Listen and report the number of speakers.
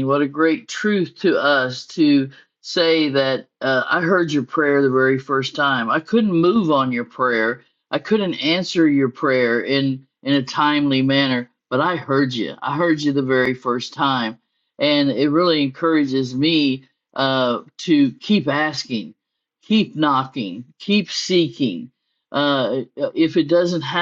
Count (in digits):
1